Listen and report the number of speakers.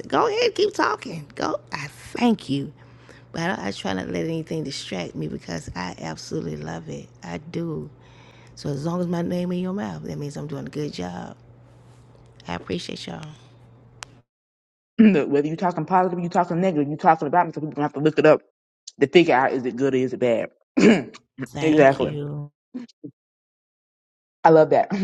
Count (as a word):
two